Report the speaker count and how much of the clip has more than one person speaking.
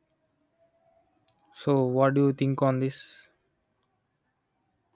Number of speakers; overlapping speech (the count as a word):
one, no overlap